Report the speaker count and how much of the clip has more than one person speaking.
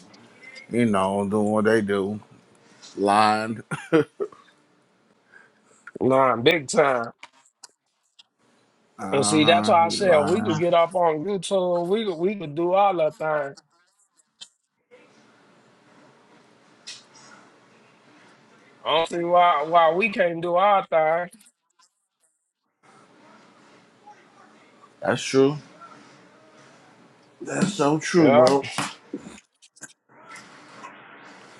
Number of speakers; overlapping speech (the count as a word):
two, about 6%